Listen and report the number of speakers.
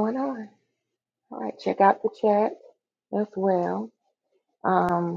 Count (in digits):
1